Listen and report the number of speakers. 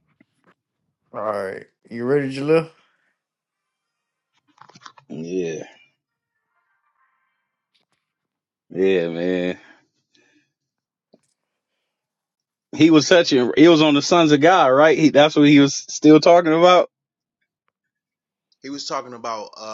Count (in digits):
3